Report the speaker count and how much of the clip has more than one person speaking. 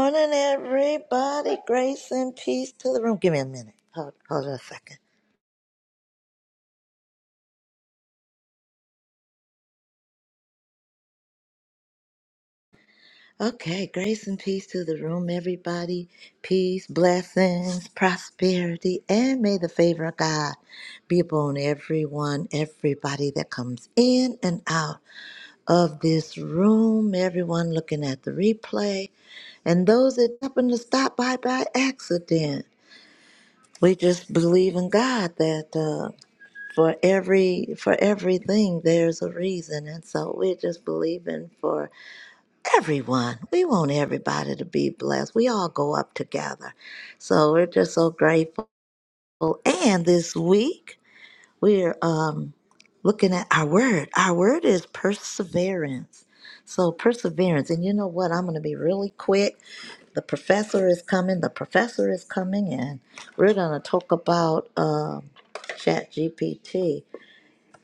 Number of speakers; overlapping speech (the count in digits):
1, no overlap